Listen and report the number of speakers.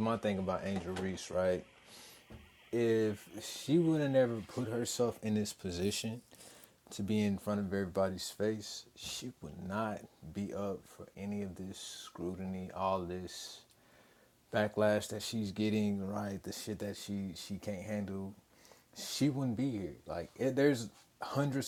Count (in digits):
1